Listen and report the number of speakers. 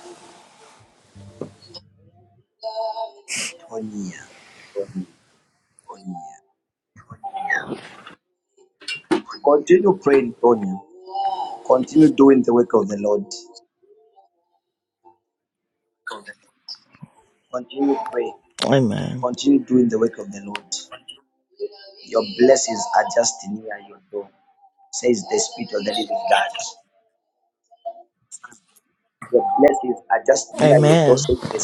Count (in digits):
2